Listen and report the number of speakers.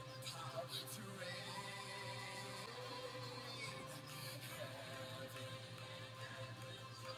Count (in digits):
0